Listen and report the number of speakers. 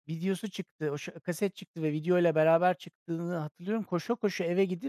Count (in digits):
1